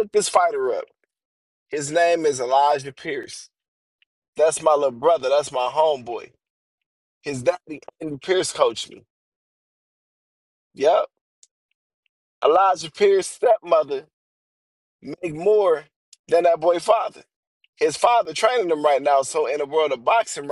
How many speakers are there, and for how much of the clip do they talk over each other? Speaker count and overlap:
1, no overlap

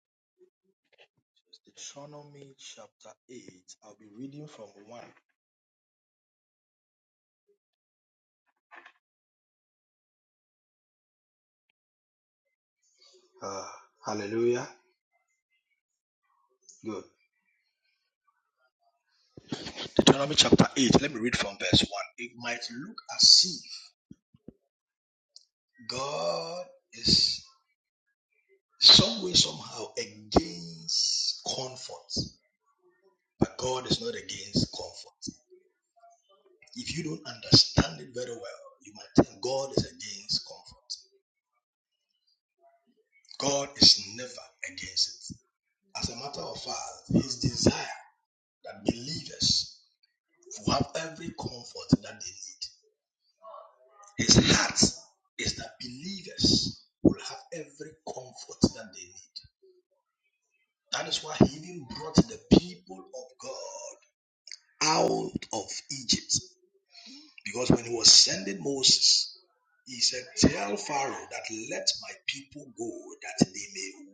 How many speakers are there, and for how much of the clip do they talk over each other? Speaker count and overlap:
1, no overlap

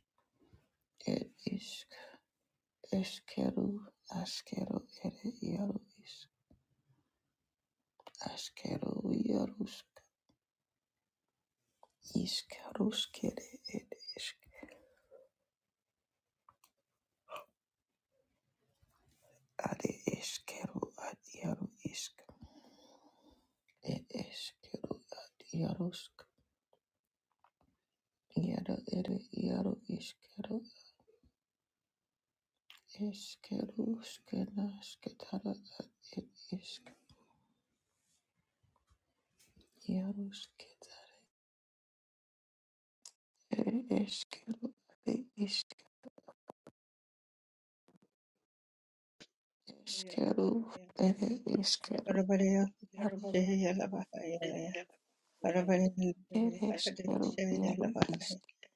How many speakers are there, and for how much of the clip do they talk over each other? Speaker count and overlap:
2, about 2%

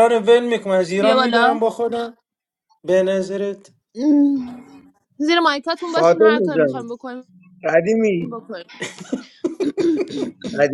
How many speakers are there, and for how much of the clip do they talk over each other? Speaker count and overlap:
3, about 14%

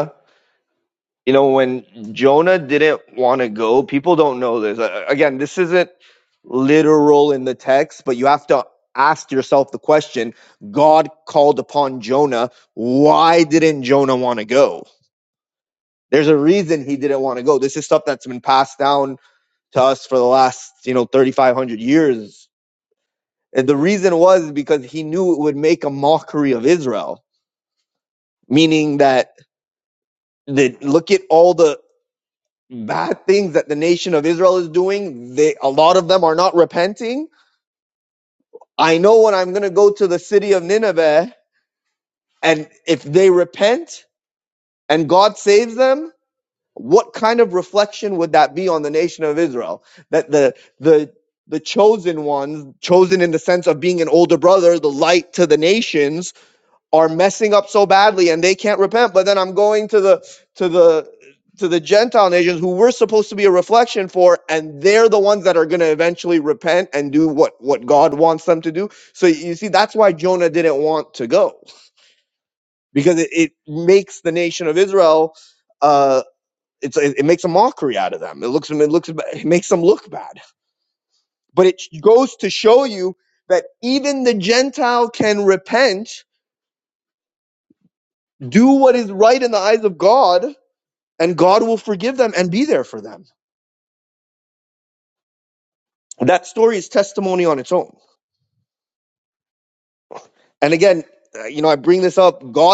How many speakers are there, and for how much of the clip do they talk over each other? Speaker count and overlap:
1, no overlap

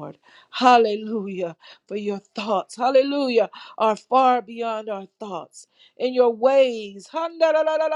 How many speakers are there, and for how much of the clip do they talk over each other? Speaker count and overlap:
1, no overlap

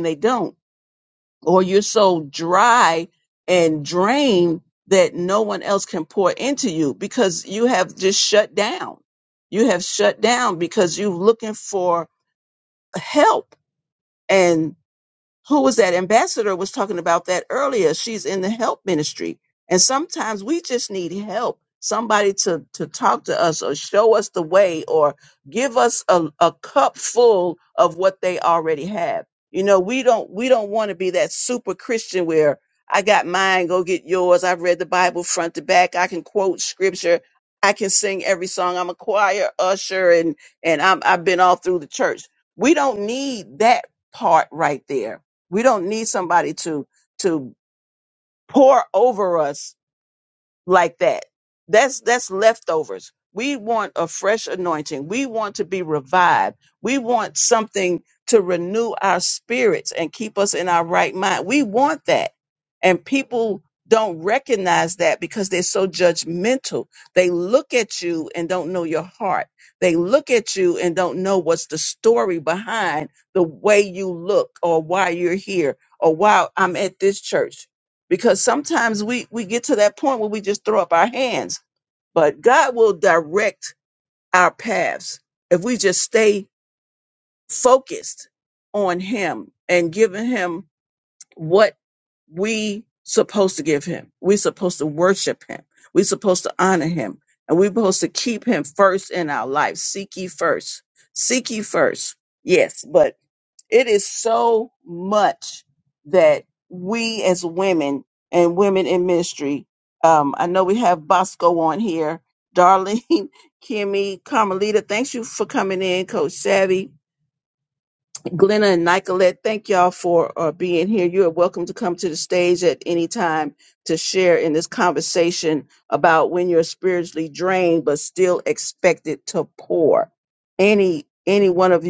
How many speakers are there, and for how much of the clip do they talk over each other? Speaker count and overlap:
1, no overlap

